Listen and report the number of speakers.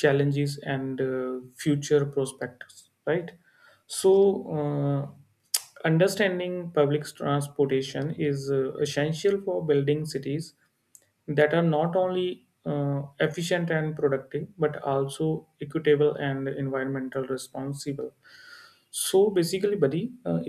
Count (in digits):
1